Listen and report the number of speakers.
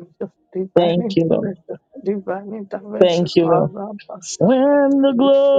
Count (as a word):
two